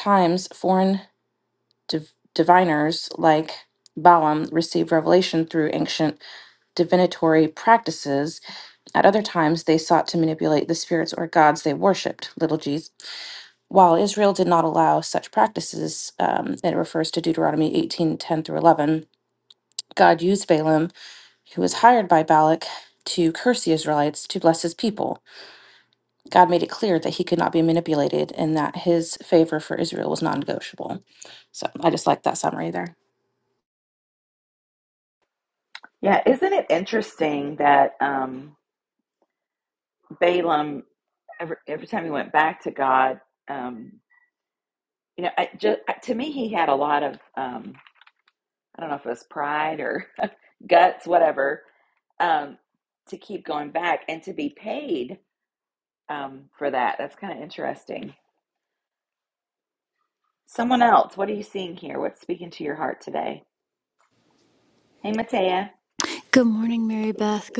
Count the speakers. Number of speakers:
three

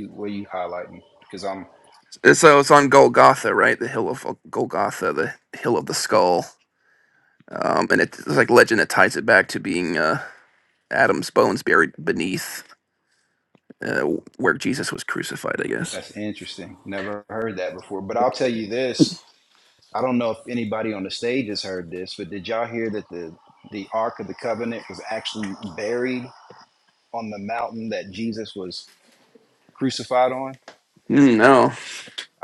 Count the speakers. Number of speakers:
two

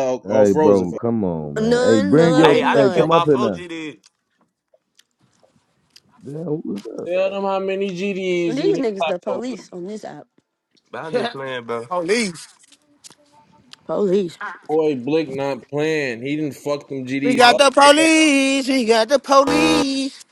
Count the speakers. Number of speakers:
five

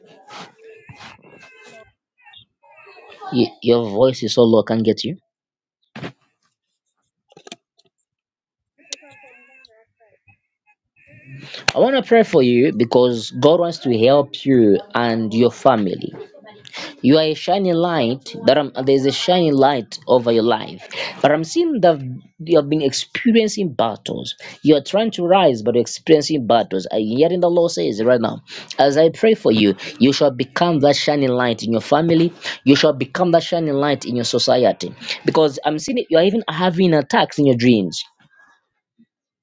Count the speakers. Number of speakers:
one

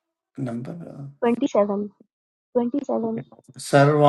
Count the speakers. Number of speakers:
two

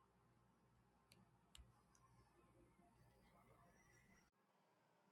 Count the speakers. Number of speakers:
zero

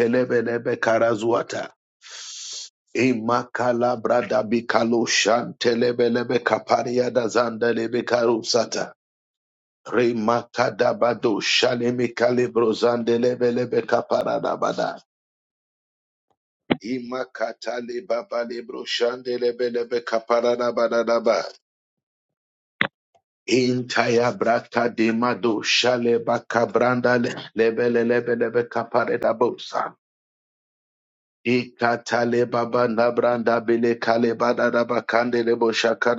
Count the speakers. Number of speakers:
one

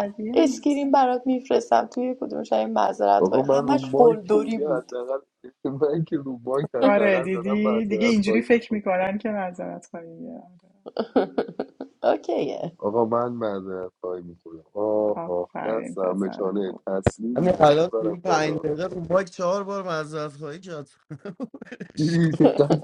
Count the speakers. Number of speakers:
four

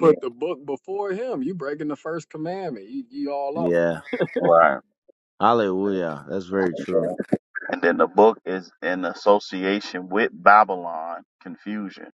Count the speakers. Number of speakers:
three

